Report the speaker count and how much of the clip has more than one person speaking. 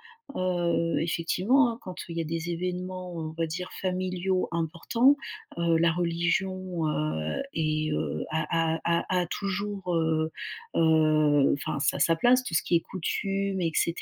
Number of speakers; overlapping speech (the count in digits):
1, no overlap